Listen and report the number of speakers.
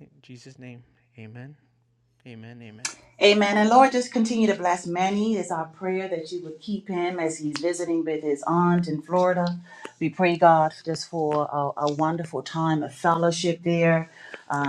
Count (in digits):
2